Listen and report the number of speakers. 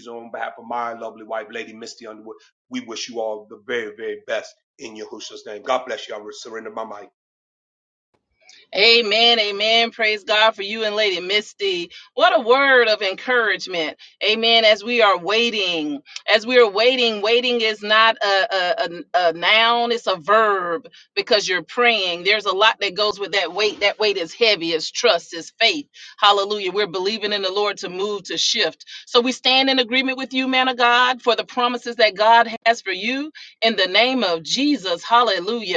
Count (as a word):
two